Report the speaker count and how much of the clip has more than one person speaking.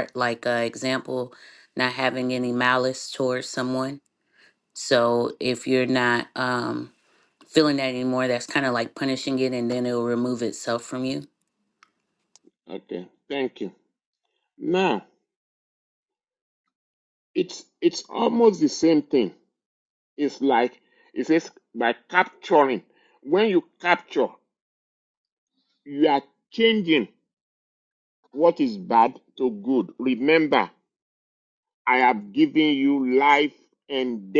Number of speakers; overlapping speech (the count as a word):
two, no overlap